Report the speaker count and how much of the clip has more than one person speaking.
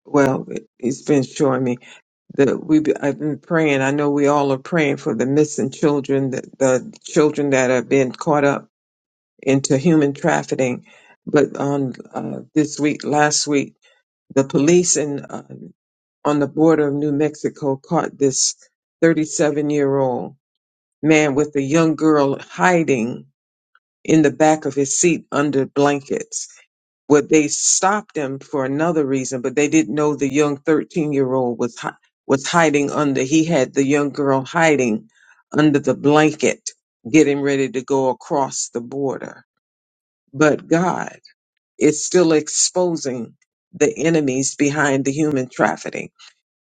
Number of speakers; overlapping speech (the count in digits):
1, no overlap